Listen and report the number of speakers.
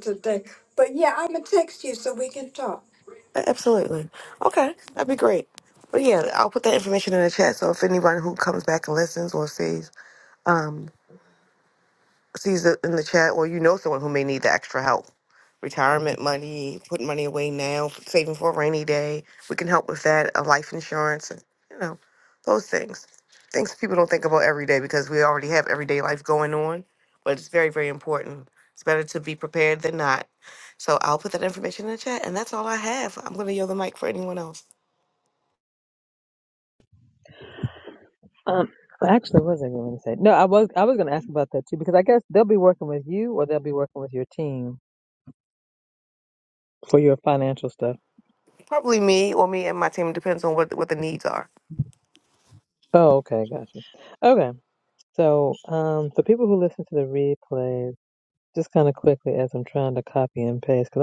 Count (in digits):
3